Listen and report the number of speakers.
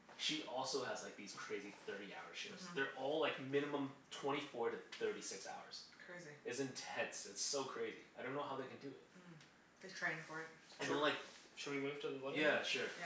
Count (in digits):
3